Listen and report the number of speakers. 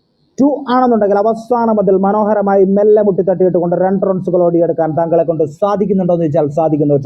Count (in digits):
1